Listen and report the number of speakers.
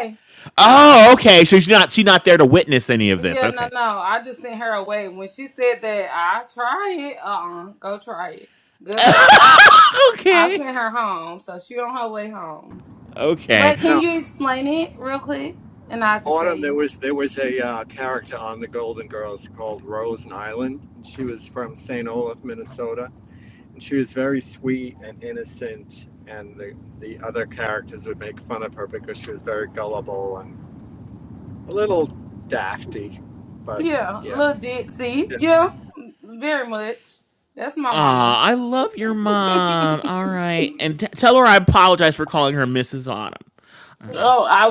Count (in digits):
3